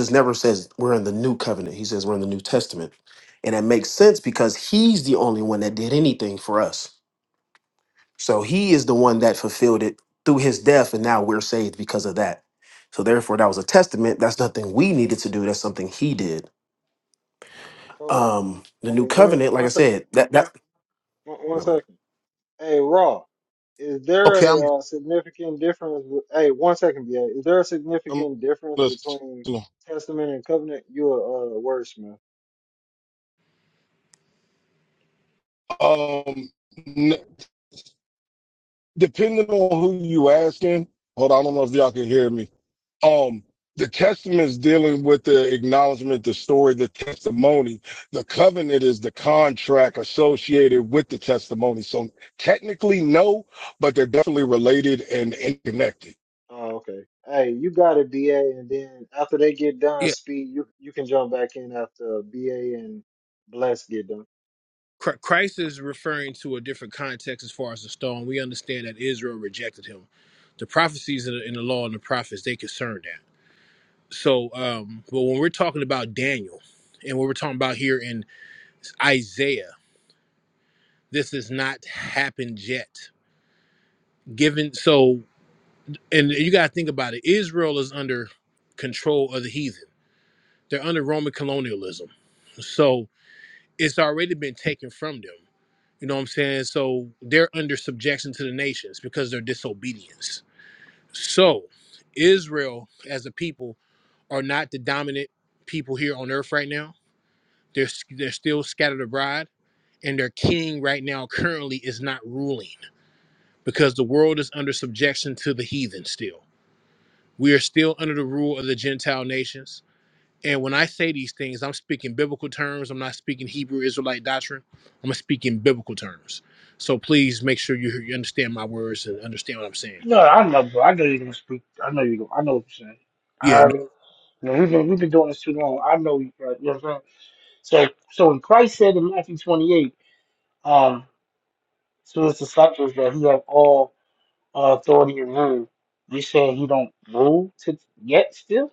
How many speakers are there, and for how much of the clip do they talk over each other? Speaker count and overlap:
5, about 2%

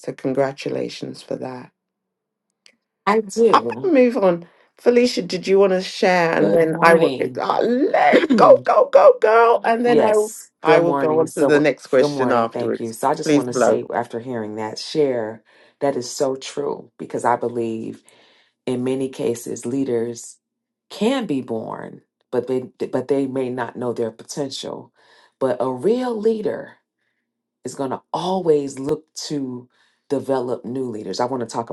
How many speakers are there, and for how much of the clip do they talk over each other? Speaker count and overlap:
2, about 13%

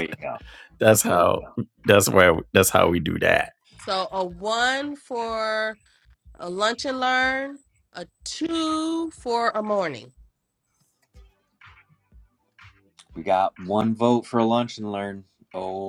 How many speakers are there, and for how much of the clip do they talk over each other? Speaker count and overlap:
3, no overlap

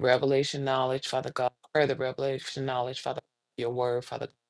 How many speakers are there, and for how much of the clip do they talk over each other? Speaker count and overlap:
1, no overlap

